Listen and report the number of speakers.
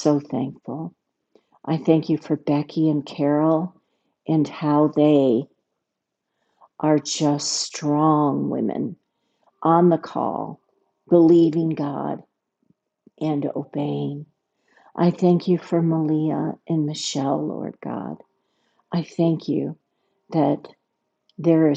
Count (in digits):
1